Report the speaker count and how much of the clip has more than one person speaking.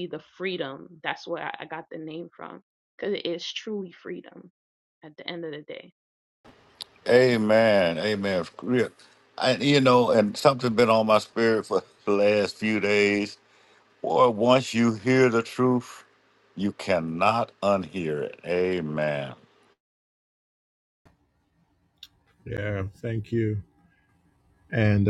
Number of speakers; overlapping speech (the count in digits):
3, no overlap